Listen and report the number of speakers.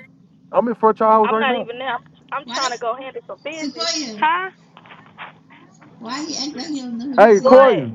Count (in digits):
3